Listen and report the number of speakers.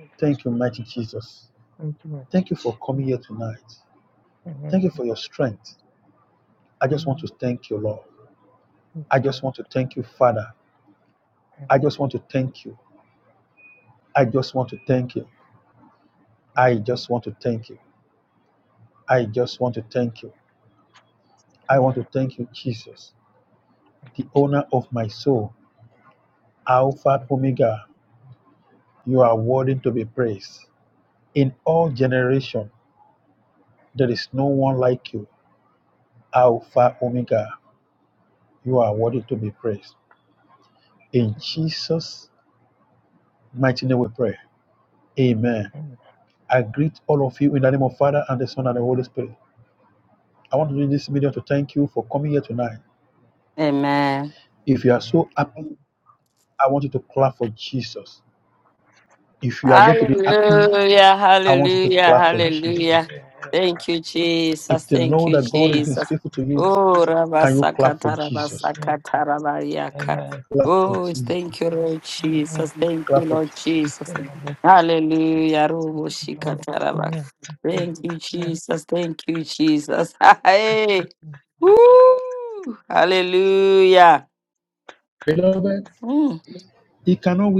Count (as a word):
three